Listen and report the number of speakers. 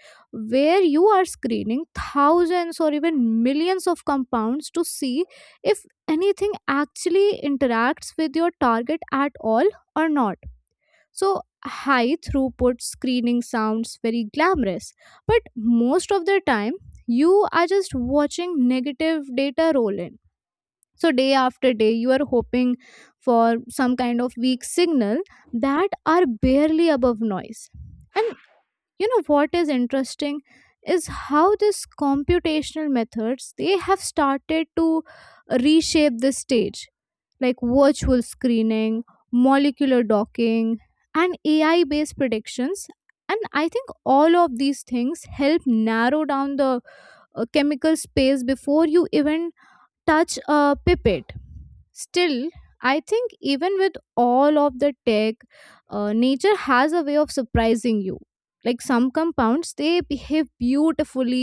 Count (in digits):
1